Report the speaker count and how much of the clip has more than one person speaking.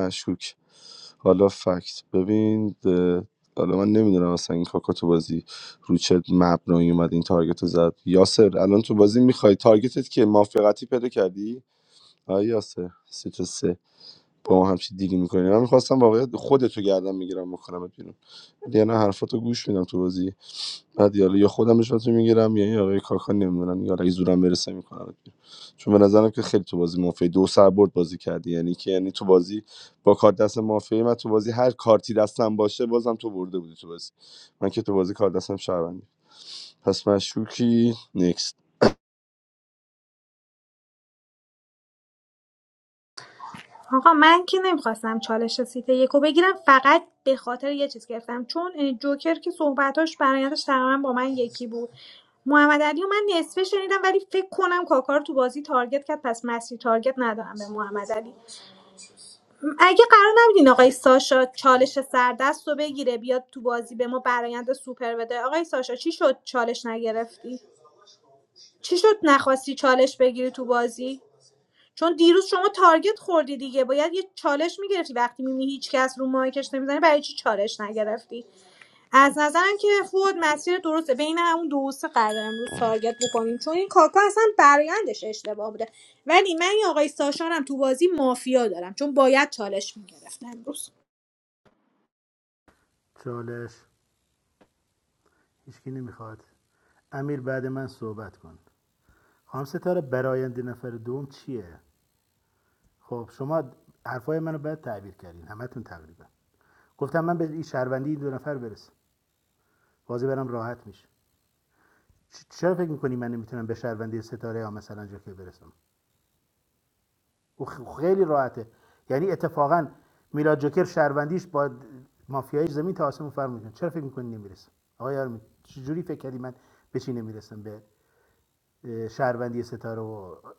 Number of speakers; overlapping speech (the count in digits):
3, no overlap